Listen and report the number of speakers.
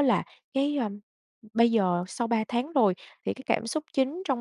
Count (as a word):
one